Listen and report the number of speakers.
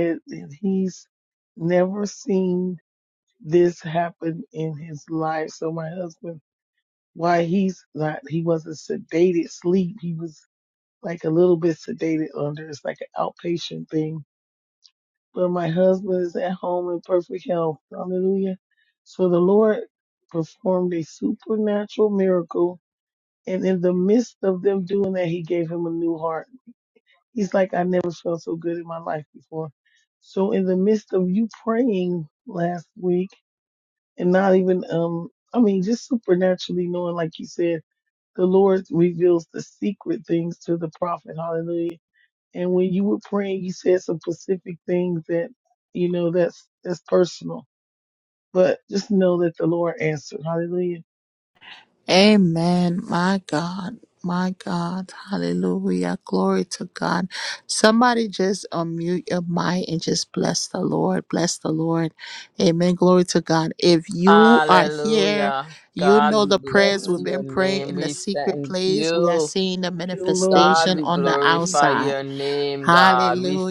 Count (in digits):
3